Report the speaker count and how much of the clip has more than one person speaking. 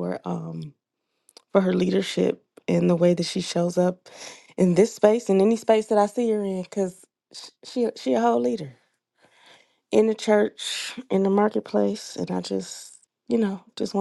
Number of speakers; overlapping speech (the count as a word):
one, no overlap